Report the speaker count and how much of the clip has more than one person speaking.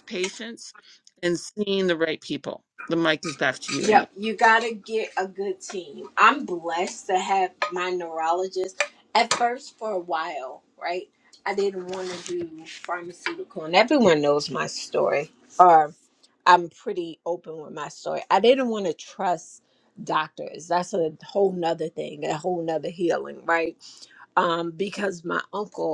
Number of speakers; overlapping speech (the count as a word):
two, about 1%